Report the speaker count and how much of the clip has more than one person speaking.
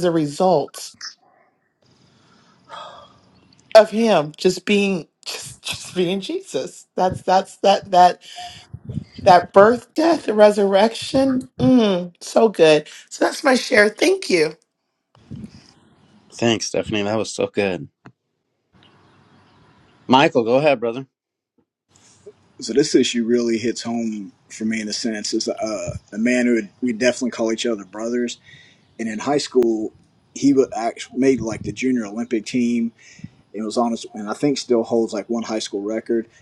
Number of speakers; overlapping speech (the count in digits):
3, no overlap